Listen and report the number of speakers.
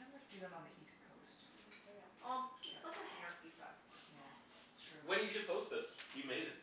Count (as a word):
three